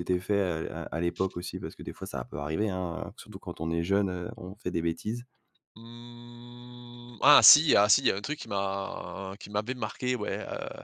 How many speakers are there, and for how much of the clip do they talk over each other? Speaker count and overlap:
2, no overlap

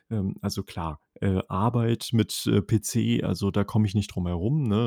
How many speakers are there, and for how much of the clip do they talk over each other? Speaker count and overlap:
1, no overlap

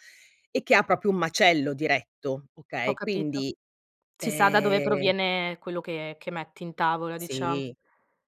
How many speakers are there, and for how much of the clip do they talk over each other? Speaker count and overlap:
2, about 23%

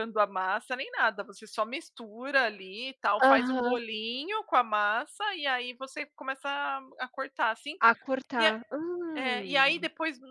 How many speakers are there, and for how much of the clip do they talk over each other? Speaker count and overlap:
2, about 14%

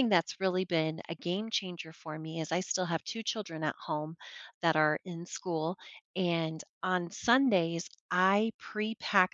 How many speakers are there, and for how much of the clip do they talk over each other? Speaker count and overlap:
1, no overlap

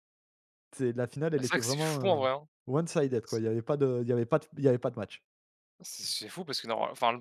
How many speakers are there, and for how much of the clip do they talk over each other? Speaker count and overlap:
2, about 12%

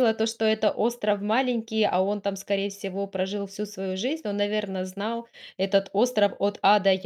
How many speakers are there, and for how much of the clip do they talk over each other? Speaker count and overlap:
1, no overlap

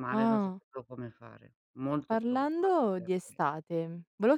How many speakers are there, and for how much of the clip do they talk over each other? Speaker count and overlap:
2, about 33%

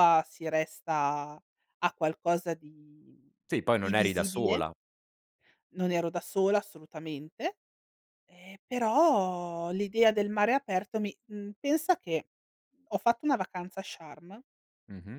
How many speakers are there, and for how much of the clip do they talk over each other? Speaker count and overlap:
2, about 5%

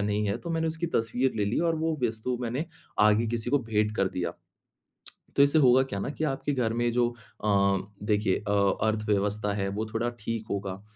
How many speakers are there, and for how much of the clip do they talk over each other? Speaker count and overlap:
1, no overlap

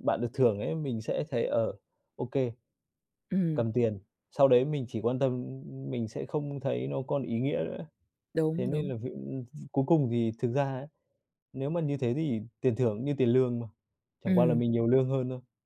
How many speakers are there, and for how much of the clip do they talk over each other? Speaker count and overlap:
2, about 5%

